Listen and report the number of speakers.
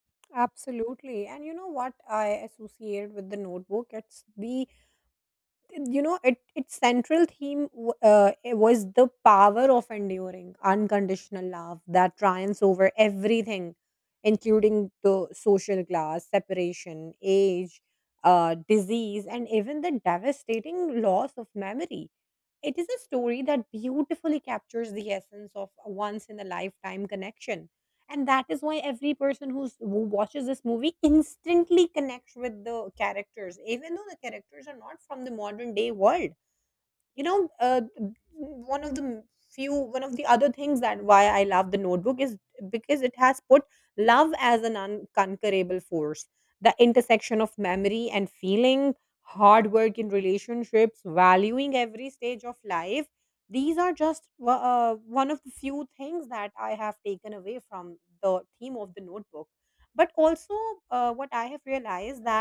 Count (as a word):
one